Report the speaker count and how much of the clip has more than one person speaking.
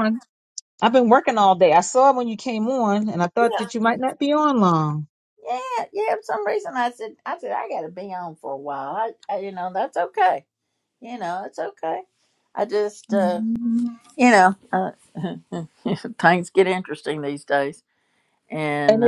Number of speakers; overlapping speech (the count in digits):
2, about 5%